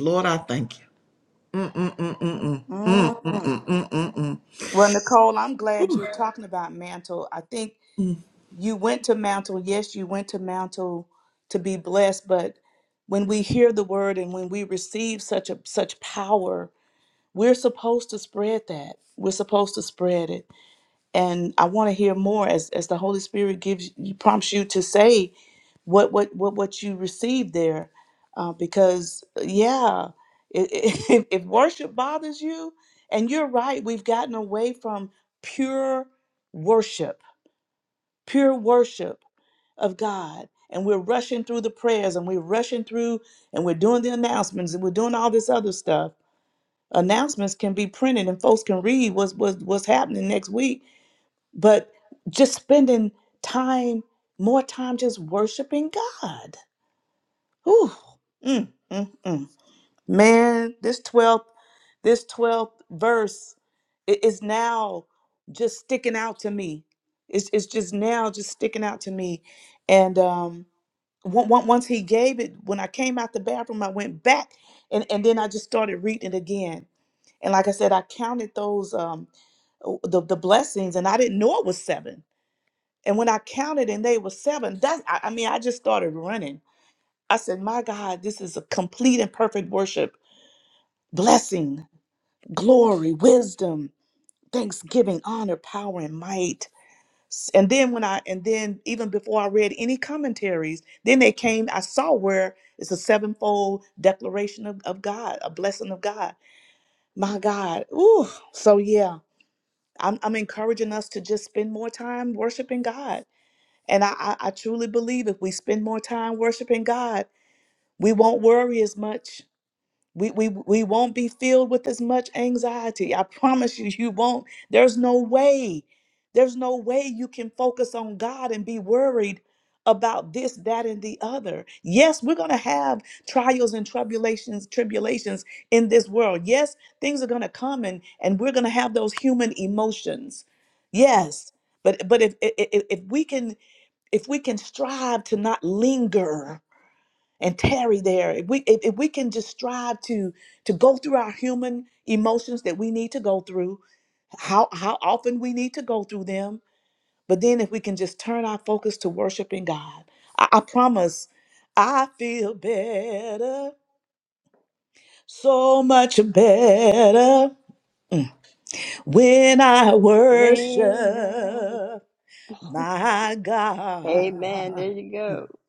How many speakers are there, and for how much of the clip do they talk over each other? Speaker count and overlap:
3, about 1%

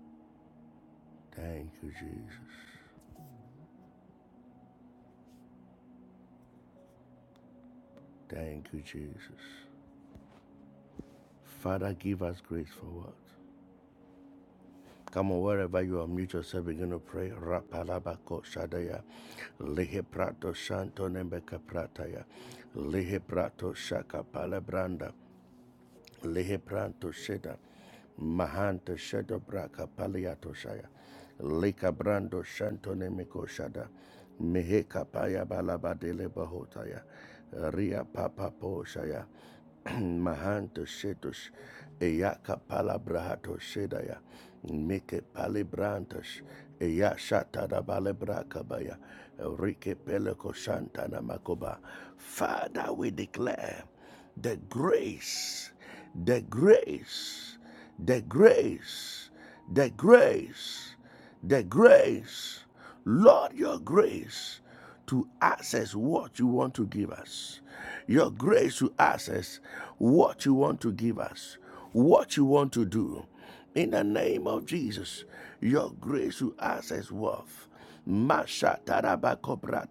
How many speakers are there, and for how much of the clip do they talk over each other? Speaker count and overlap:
1, no overlap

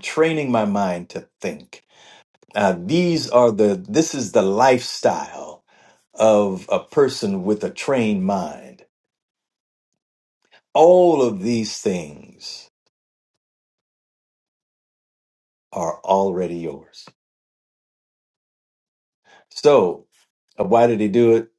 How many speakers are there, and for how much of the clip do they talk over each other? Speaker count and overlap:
1, no overlap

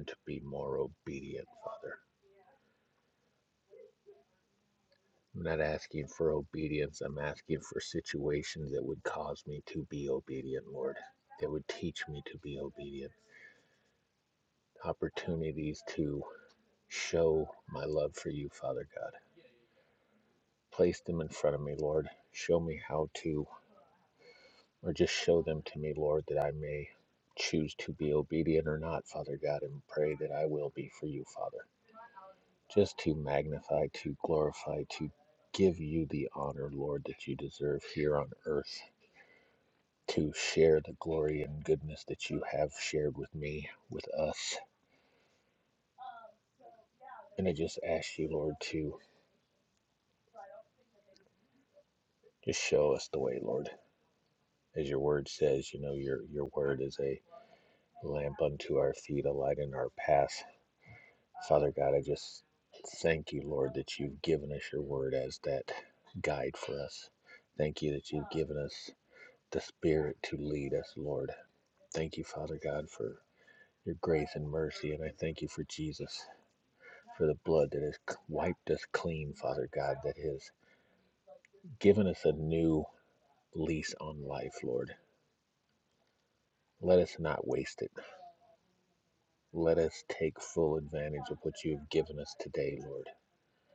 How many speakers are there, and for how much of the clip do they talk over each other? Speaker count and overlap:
1, no overlap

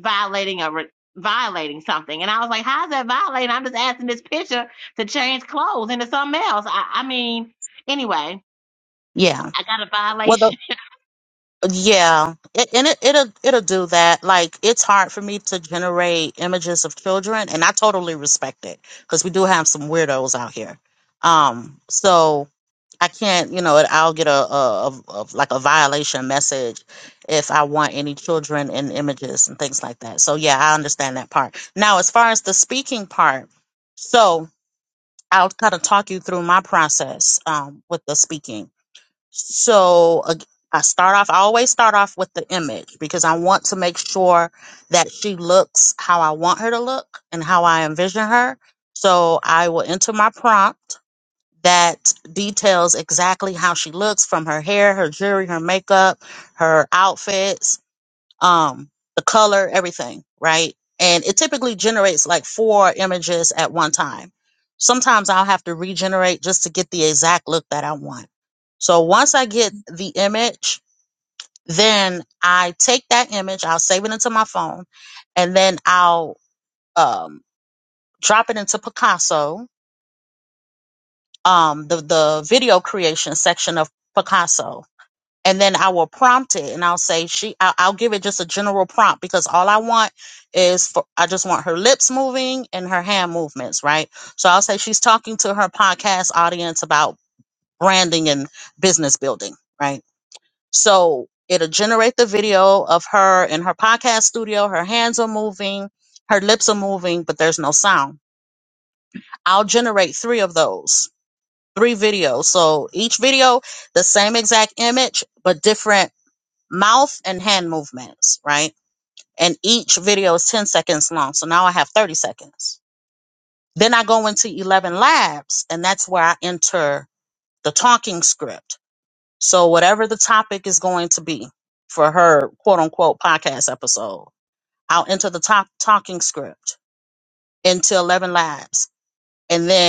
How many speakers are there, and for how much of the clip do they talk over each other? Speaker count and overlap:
2, under 1%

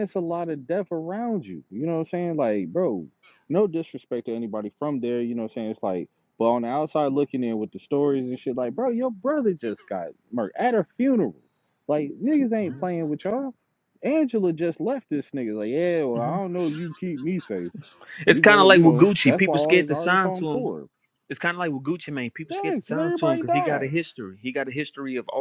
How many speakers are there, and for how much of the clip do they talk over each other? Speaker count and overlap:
2, about 16%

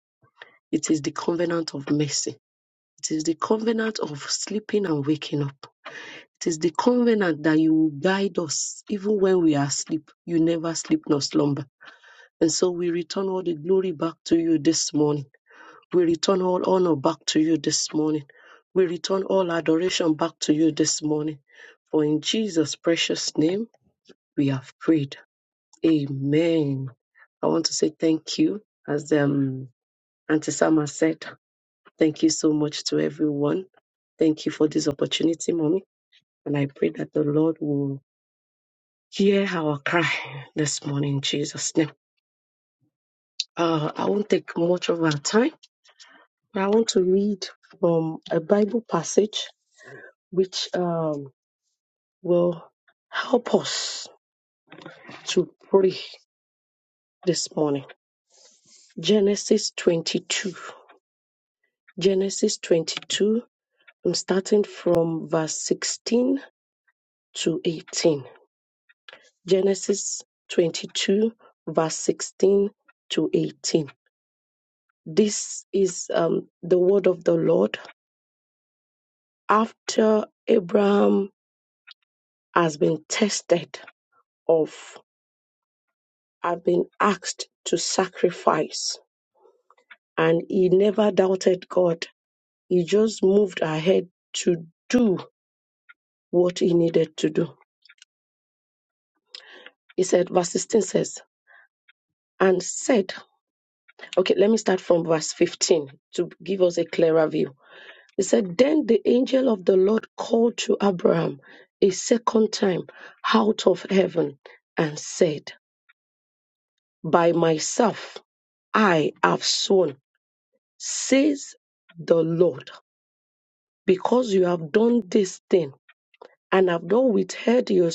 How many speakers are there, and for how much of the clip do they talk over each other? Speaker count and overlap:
1, no overlap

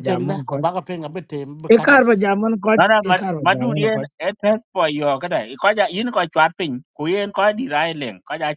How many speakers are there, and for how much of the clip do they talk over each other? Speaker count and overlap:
3, about 26%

